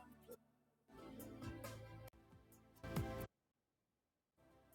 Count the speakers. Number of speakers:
0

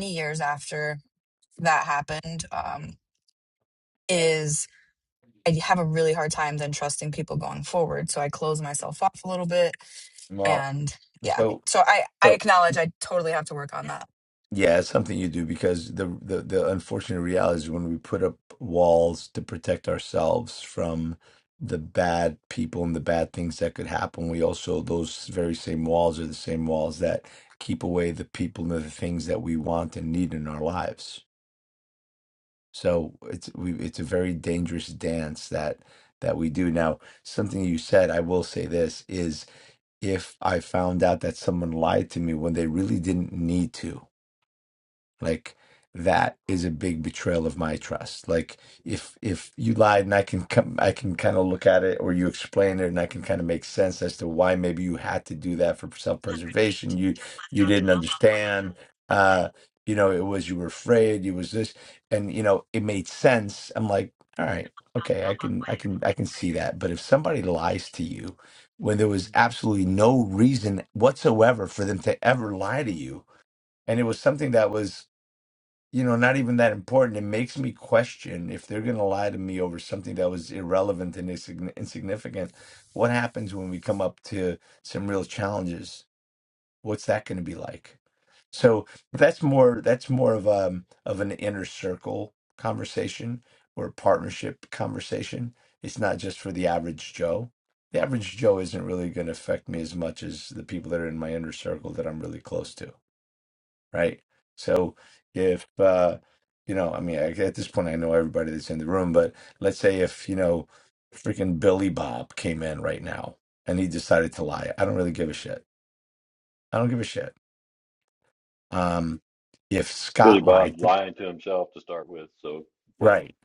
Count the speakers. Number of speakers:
3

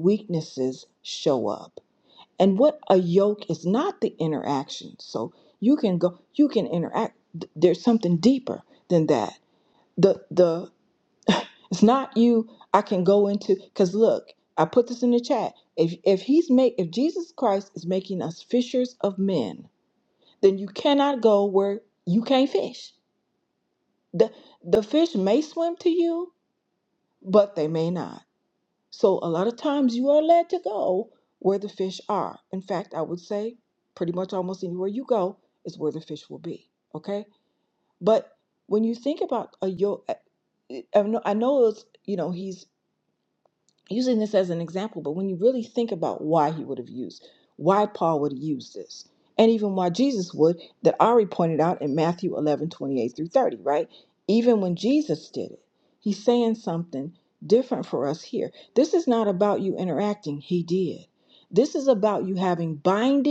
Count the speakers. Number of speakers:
1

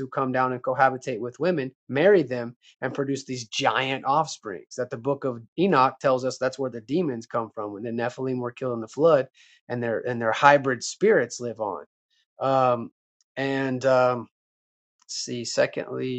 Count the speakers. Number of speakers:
1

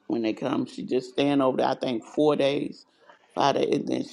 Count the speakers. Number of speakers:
1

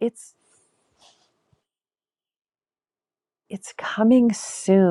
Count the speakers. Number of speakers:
1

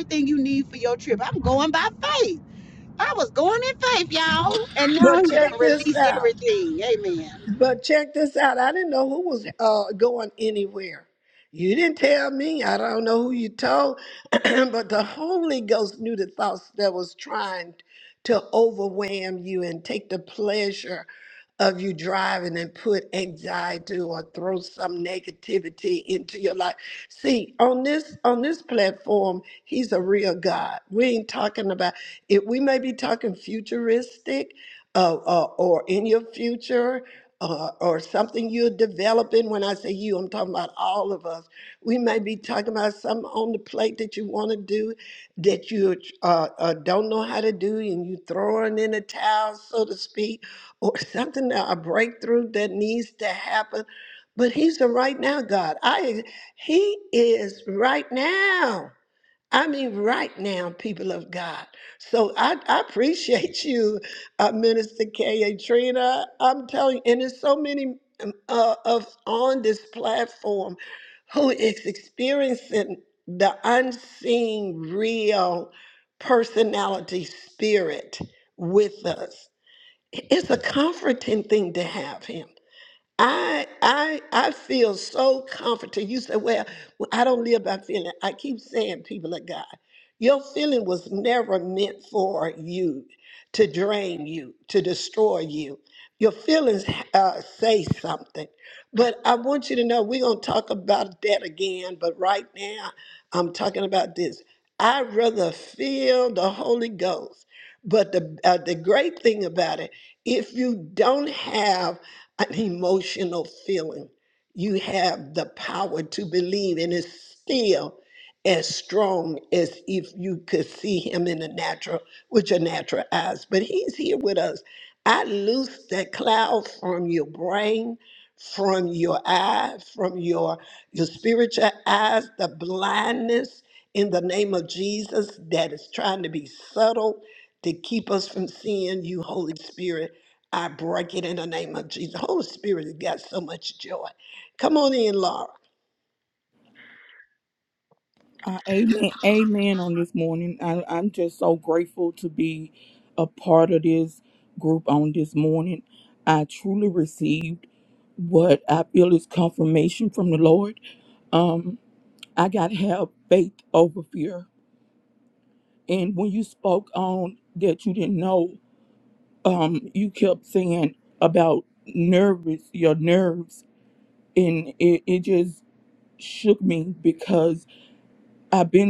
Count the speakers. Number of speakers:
3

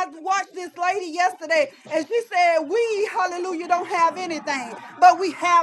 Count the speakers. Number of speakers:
1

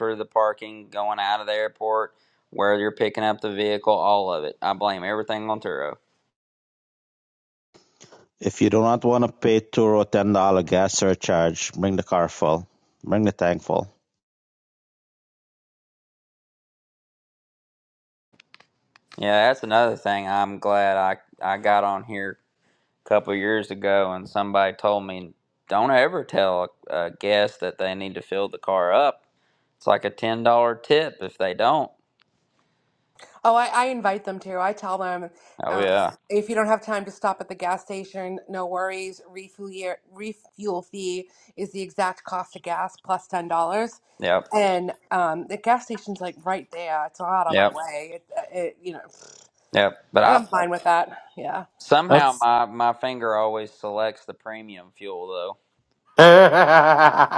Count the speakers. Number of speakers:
4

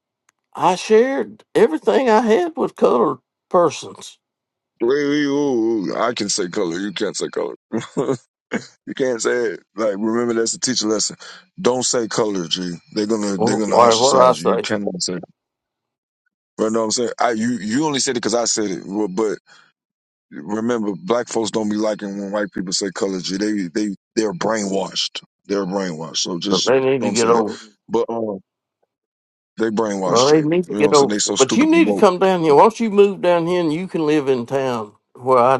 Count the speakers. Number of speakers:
2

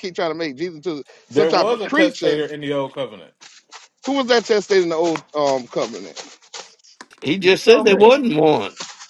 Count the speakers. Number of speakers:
3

